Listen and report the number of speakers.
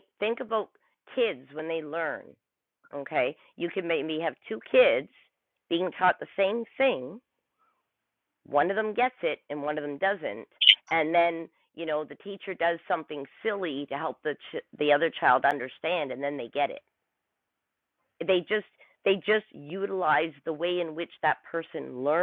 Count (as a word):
one